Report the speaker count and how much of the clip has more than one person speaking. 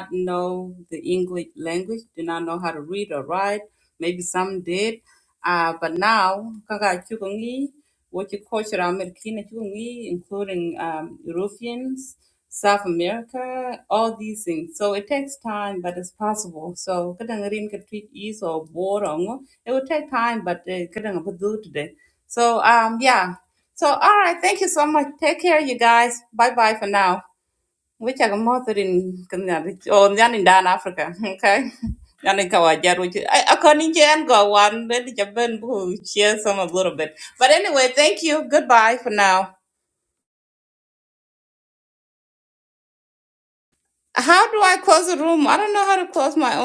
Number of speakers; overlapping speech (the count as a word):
one, no overlap